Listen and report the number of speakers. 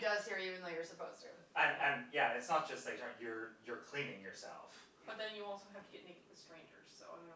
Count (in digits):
3